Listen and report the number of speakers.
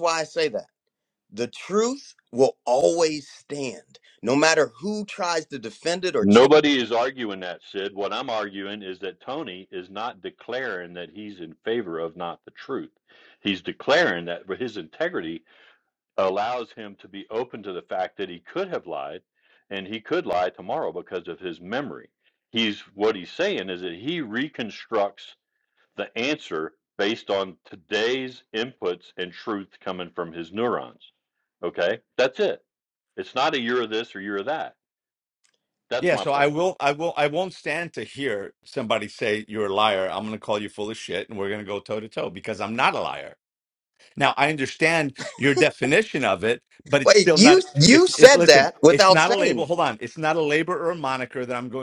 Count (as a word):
three